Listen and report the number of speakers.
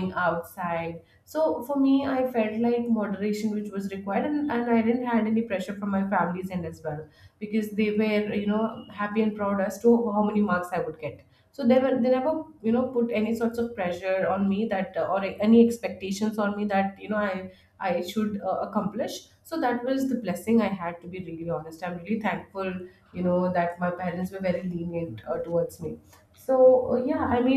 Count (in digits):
1